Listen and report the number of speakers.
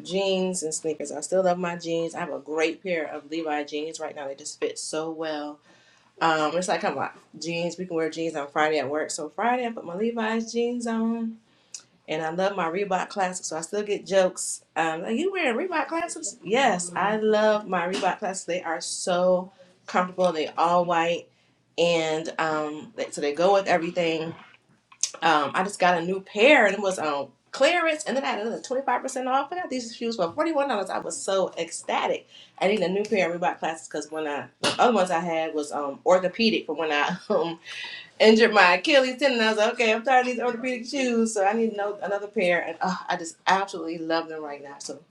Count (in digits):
1